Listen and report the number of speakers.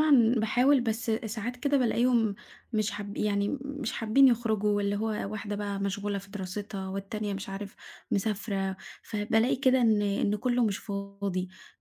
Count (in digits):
1